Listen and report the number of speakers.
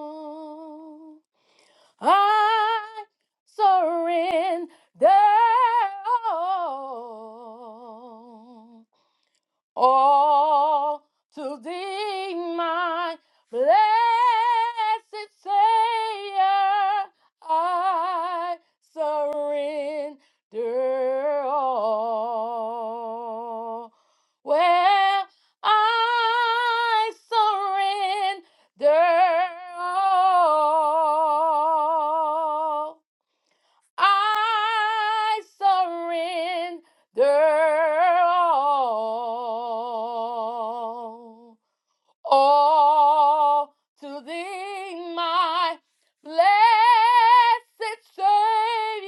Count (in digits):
1